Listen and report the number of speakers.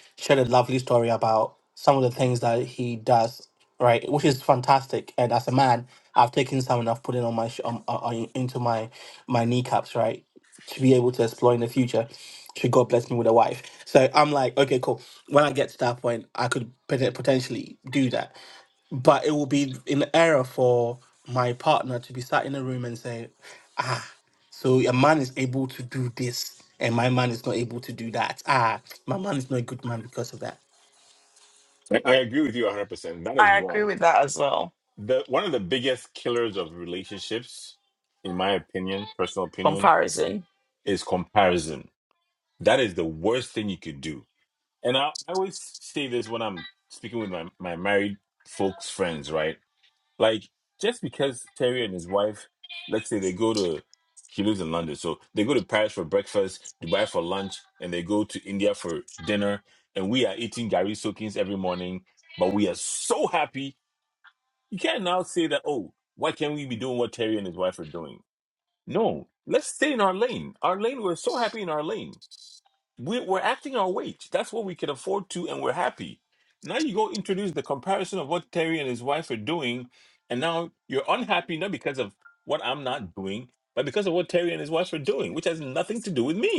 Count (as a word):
three